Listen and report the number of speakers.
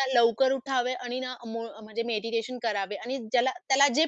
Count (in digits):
1